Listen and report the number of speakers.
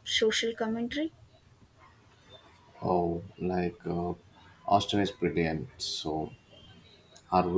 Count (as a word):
two